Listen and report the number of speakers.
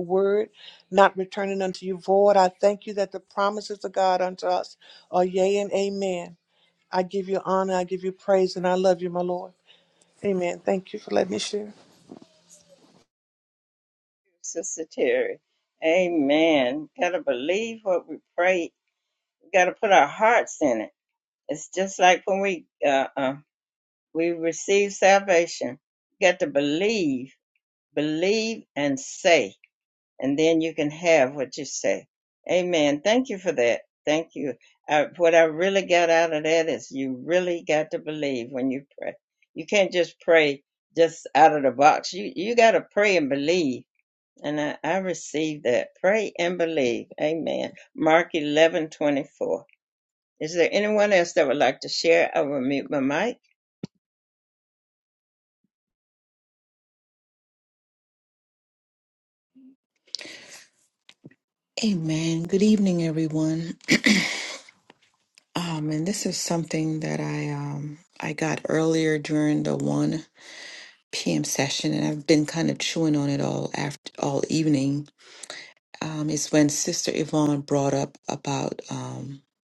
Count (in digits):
3